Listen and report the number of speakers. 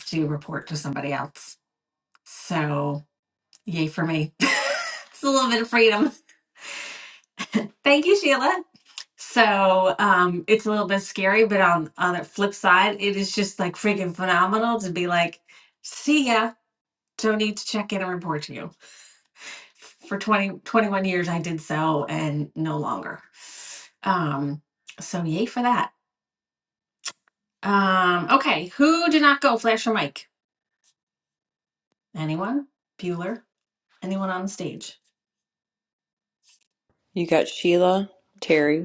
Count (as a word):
two